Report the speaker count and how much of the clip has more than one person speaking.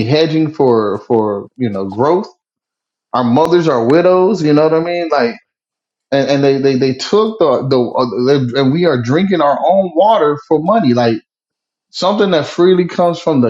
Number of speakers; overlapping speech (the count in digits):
1, no overlap